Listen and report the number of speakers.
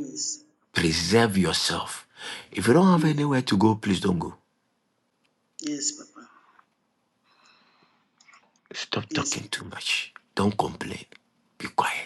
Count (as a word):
two